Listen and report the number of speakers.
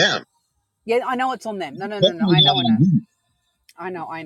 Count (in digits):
2